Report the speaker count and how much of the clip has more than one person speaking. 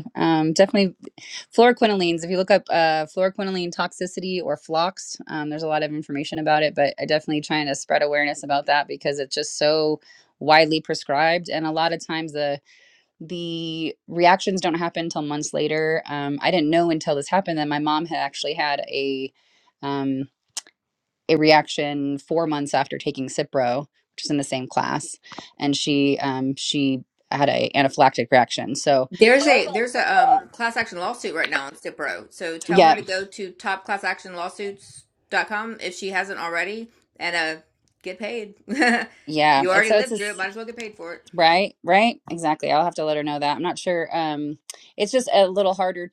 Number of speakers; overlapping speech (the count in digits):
2, about 2%